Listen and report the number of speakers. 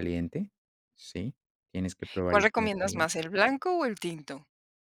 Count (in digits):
2